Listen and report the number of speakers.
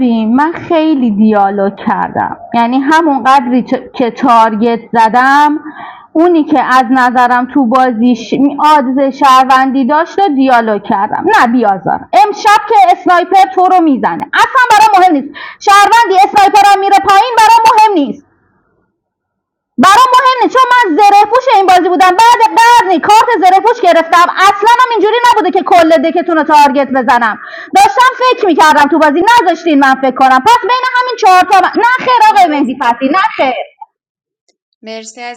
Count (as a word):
two